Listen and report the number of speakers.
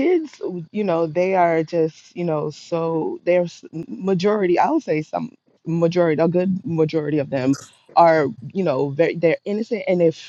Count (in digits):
1